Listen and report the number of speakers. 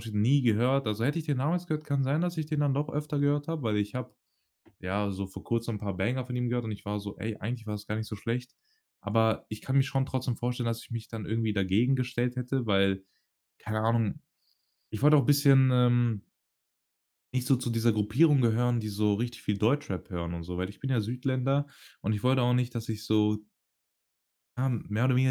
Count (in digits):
1